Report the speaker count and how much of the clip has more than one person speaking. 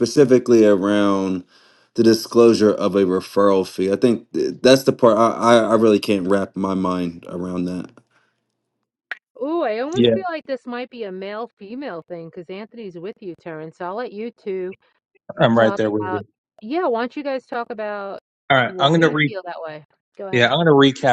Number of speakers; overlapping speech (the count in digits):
3, about 8%